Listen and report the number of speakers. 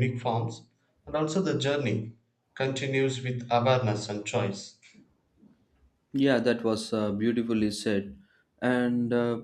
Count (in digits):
2